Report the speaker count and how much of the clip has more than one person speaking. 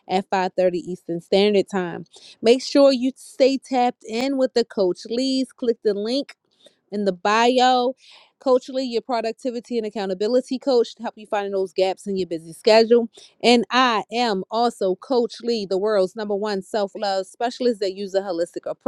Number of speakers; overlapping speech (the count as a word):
one, no overlap